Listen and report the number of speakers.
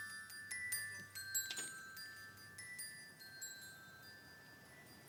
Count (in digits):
0